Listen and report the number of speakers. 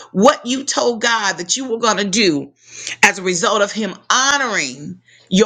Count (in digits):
1